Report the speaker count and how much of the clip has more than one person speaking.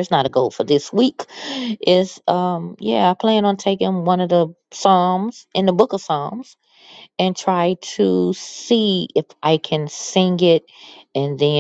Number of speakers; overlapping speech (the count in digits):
1, no overlap